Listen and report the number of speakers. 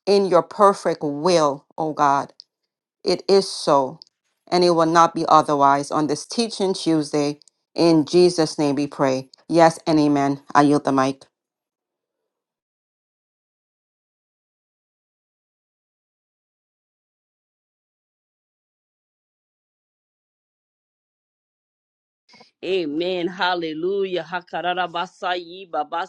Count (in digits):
2